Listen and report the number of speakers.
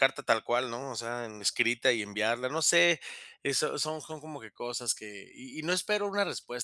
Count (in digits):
1